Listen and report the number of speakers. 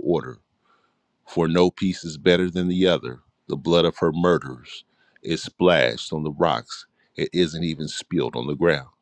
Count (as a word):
one